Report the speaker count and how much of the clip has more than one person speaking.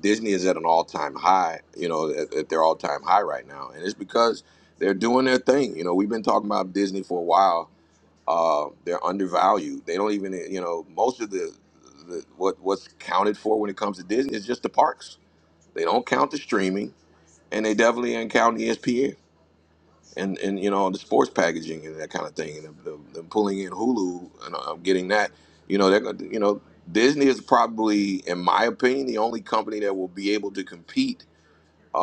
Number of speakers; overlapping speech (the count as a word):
one, no overlap